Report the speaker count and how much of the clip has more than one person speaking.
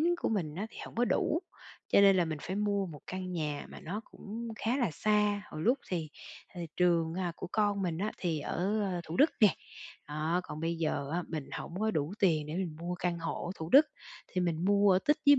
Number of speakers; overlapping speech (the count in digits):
1, no overlap